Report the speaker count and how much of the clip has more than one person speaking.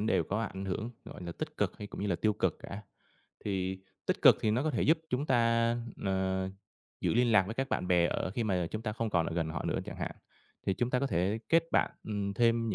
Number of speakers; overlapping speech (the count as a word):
one, no overlap